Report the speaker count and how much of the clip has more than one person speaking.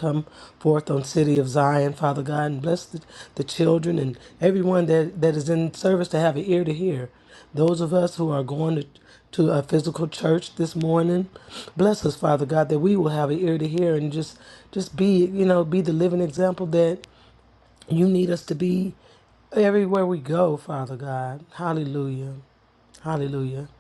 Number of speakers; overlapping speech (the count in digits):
1, no overlap